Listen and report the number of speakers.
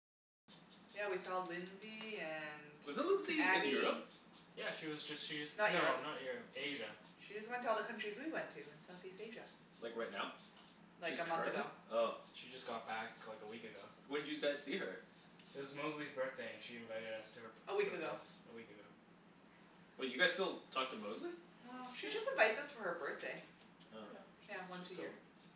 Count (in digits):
3